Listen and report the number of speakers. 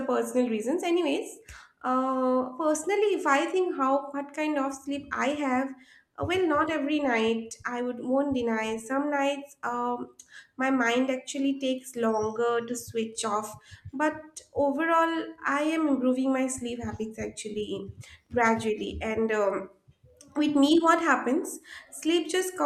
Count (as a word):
one